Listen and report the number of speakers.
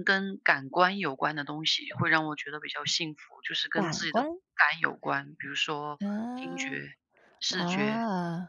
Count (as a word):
two